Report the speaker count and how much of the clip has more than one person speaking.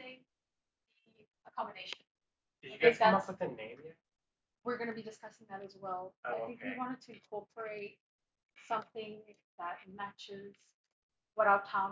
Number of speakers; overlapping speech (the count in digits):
2, about 11%